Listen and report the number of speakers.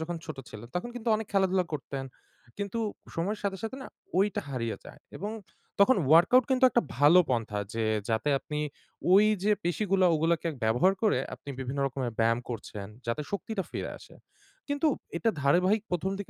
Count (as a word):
one